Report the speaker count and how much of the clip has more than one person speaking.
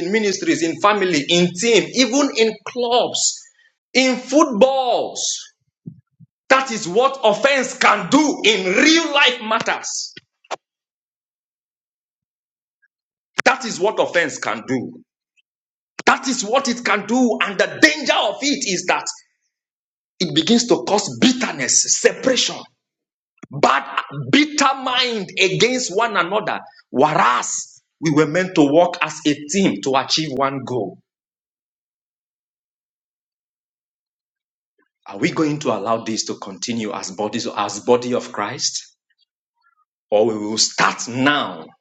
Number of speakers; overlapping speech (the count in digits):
1, no overlap